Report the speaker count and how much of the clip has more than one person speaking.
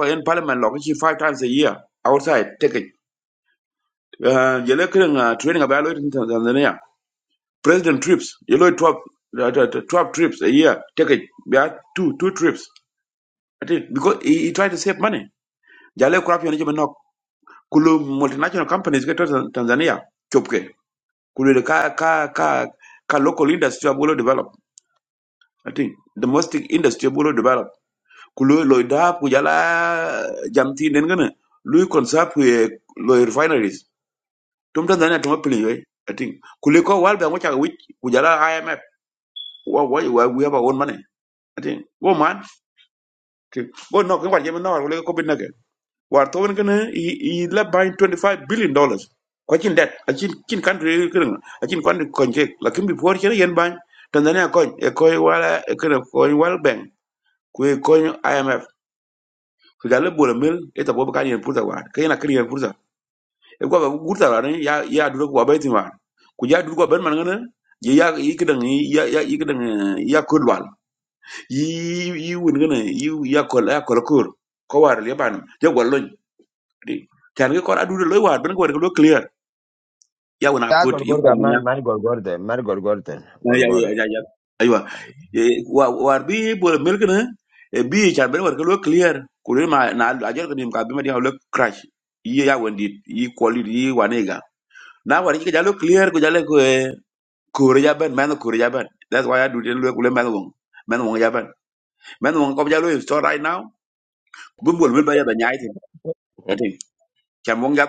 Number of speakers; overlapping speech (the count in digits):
2, about 1%